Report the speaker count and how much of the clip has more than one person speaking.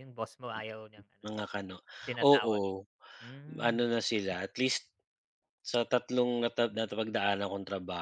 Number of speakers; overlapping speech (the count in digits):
2, about 5%